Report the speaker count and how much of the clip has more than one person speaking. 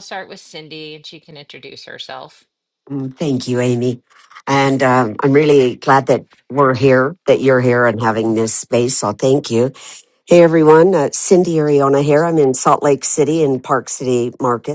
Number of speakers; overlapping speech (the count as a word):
two, no overlap